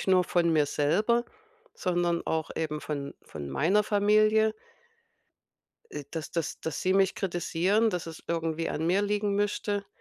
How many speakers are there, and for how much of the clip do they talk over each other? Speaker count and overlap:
1, no overlap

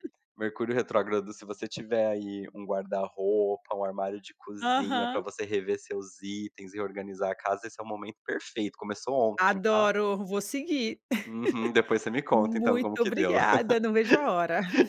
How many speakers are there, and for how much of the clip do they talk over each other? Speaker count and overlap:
2, about 15%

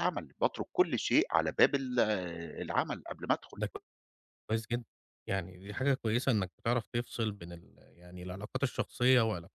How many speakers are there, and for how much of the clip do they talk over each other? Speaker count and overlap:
2, under 1%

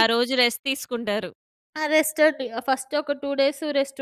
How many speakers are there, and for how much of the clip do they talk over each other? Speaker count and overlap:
2, about 1%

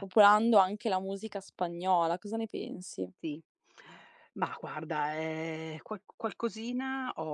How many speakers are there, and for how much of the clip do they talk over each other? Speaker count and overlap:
2, about 1%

